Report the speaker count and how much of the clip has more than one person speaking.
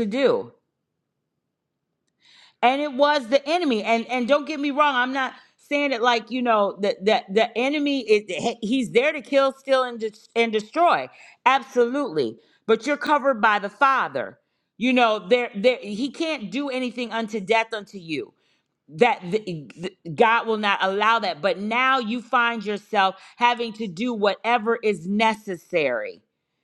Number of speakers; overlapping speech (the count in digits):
1, no overlap